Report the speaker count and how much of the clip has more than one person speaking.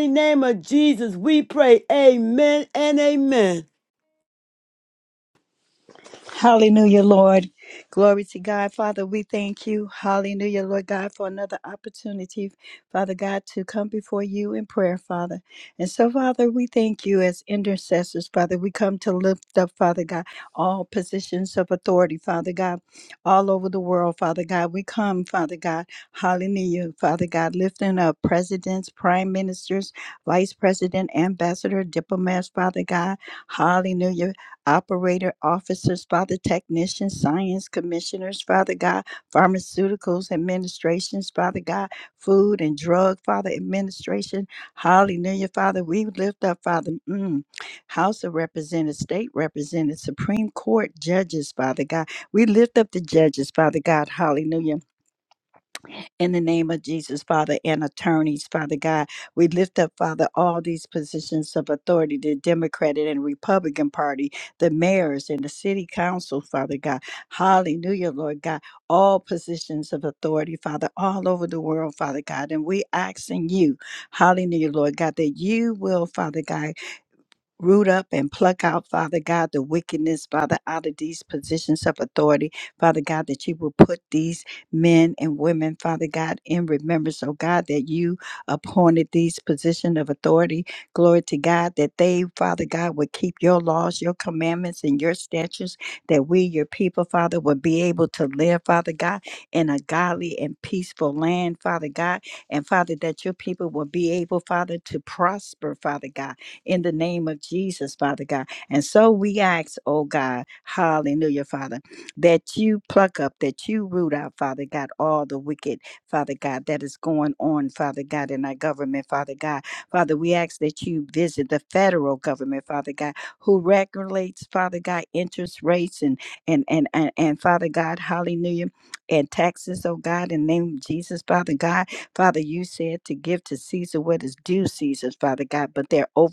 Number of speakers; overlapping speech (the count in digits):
2, no overlap